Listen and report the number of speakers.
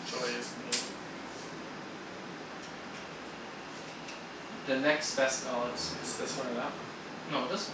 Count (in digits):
2